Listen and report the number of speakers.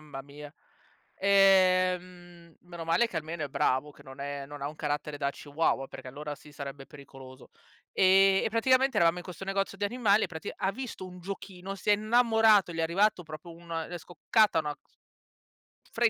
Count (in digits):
1